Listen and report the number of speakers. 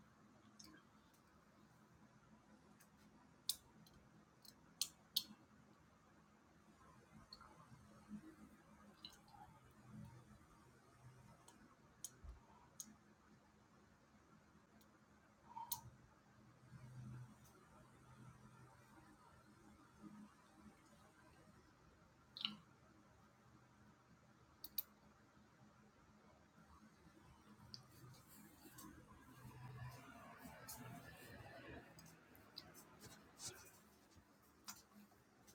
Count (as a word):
zero